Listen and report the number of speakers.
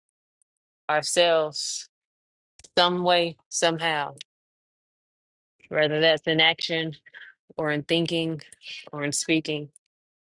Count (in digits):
1